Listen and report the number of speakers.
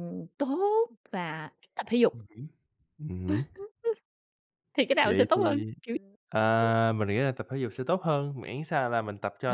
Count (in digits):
2